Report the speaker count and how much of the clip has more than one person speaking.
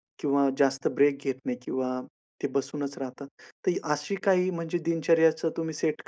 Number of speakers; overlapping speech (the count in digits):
1, no overlap